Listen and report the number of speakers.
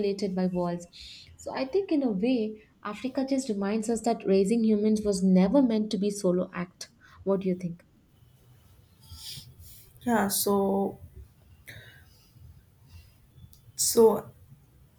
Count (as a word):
two